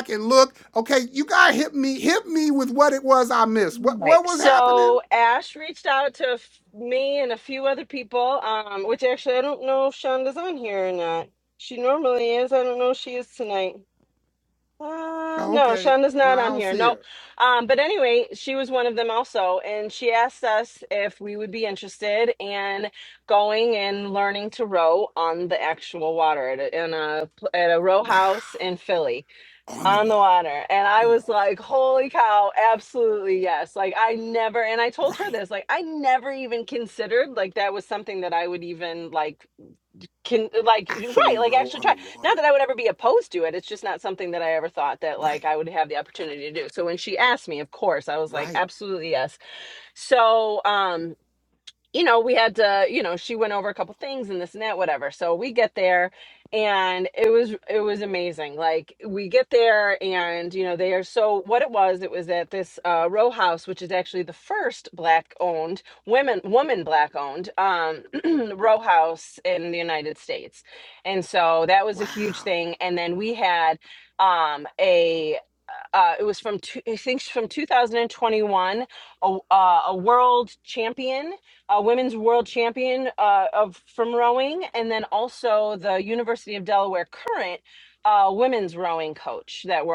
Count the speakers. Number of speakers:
2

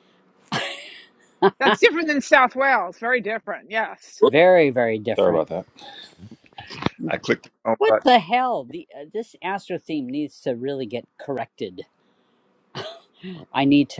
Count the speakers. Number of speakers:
3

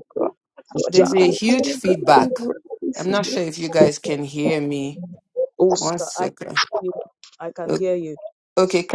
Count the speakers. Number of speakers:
3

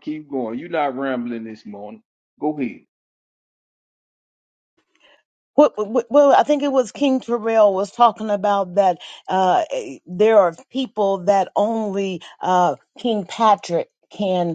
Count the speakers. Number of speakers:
2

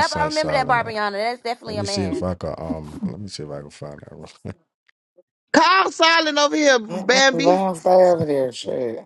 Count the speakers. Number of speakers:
4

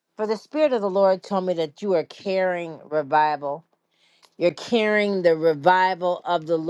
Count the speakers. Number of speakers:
1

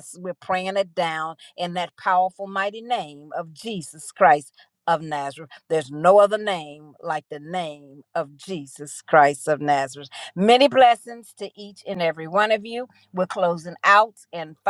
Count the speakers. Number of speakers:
1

